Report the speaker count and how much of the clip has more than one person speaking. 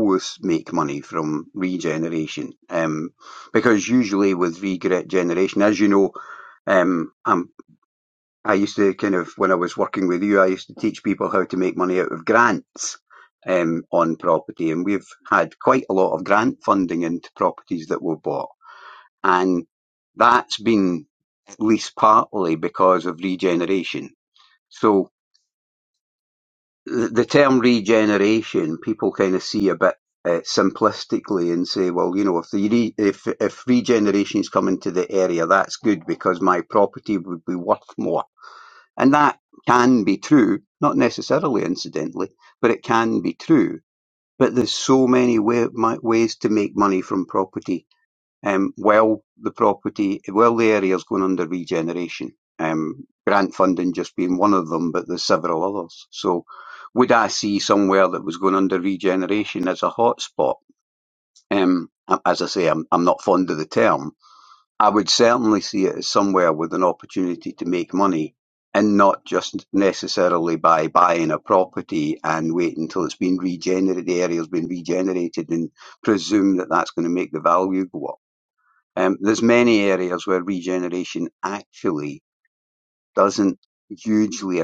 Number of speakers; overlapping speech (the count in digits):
1, no overlap